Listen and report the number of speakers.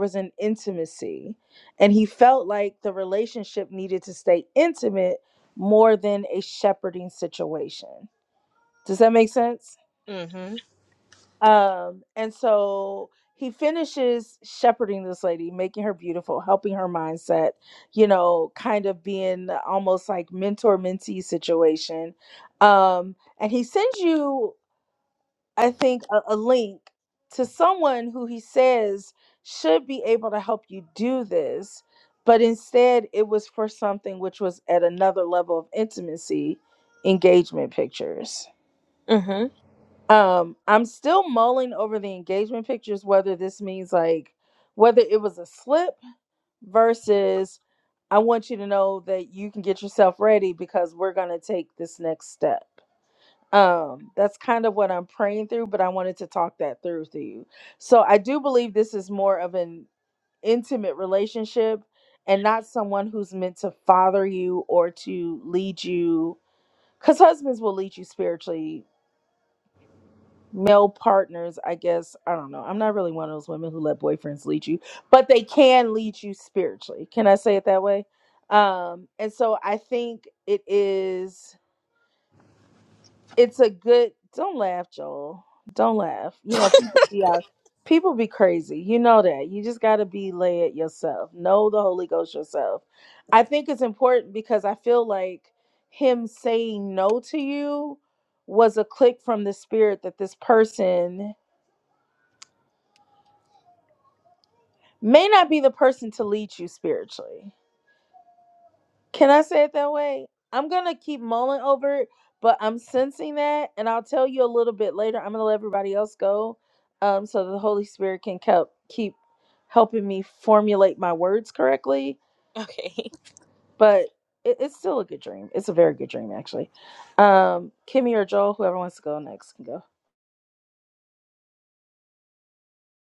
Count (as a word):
two